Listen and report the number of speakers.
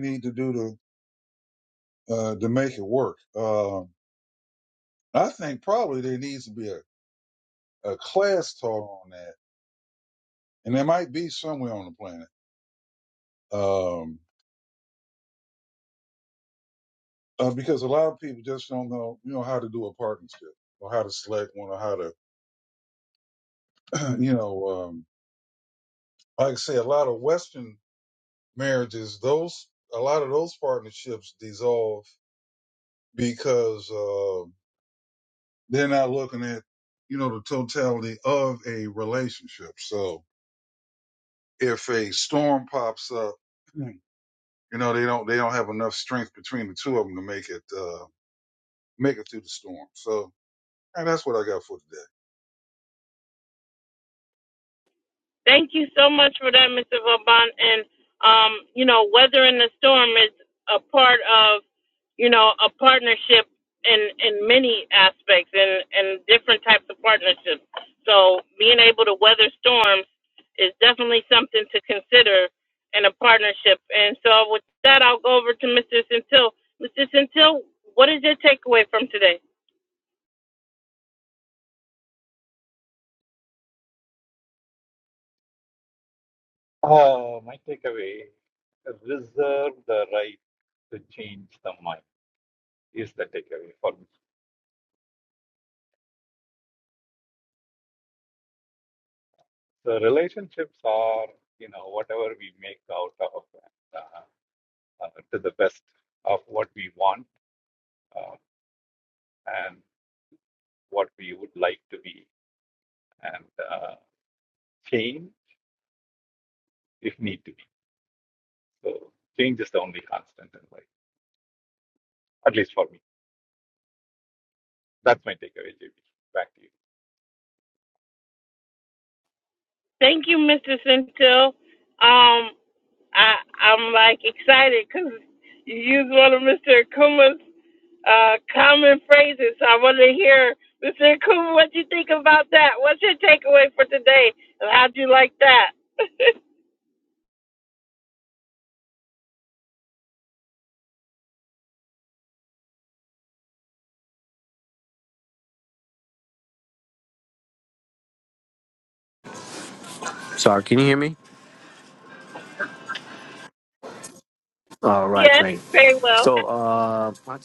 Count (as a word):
four